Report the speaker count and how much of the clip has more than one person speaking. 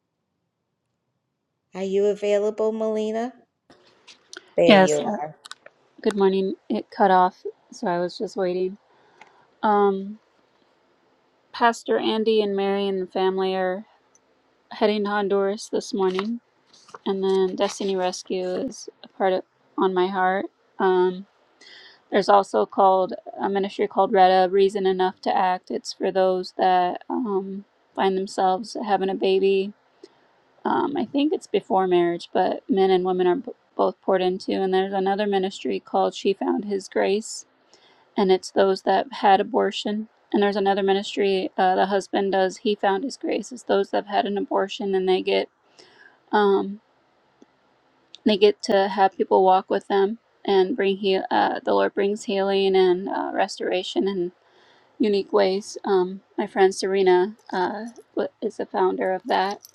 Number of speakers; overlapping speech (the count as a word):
two, about 1%